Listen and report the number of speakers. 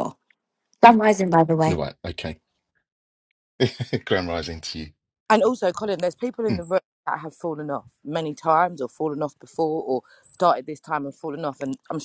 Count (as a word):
three